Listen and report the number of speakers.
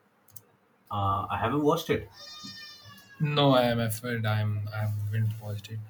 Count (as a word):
two